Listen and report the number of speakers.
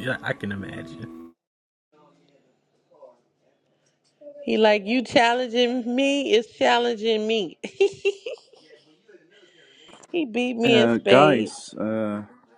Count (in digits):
3